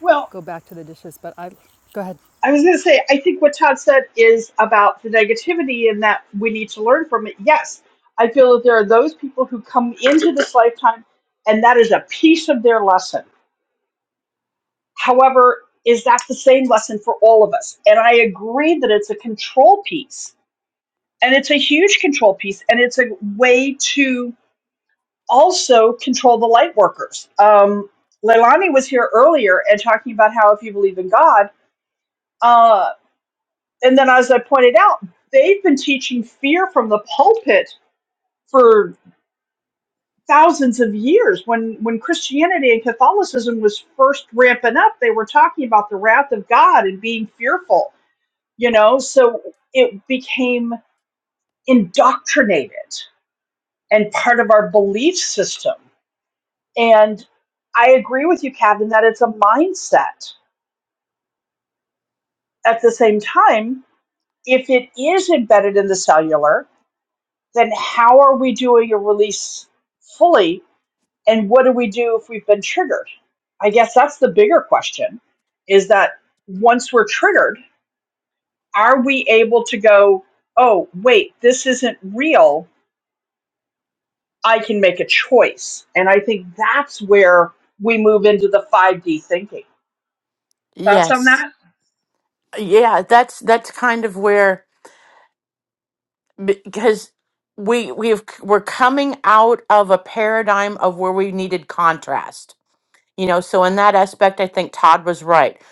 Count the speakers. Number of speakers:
three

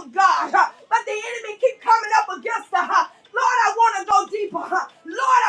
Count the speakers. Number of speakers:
one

